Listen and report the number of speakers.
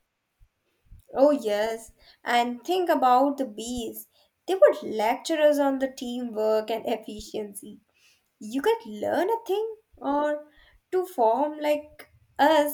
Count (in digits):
1